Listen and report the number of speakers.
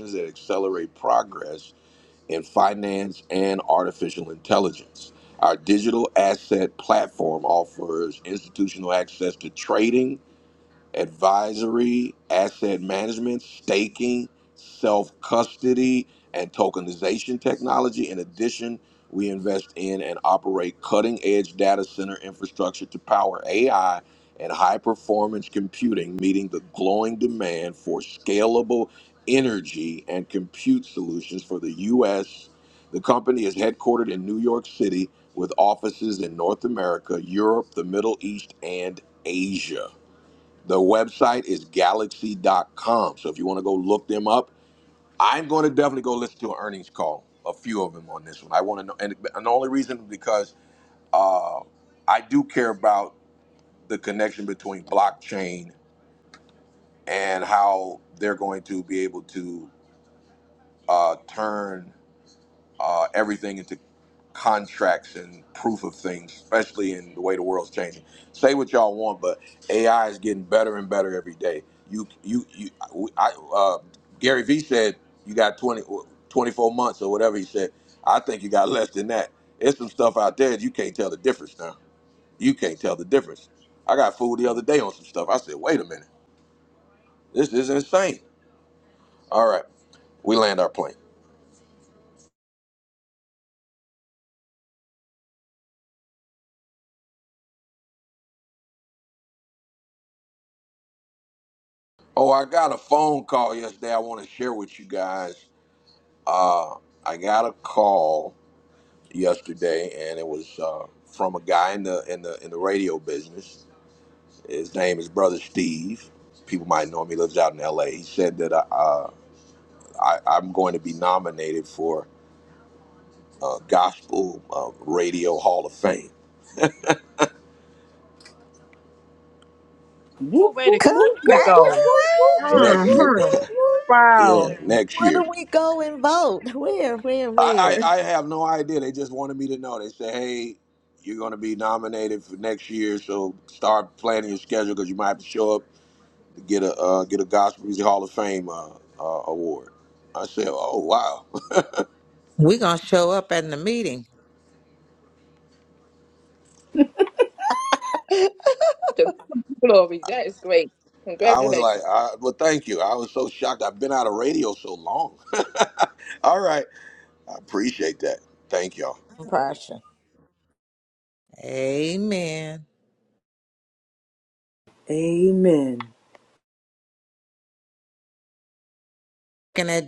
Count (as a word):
five